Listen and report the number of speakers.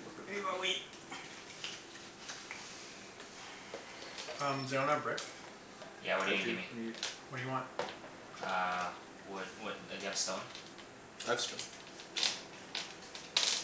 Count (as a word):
three